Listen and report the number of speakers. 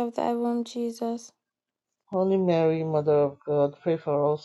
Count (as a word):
two